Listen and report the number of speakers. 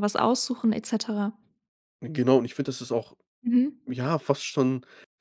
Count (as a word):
two